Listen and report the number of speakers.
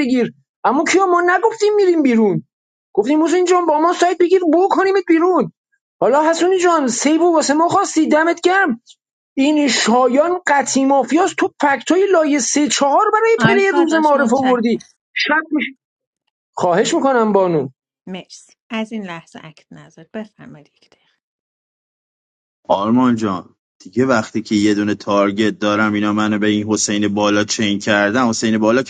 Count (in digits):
3